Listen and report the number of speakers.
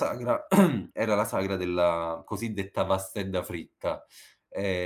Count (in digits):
1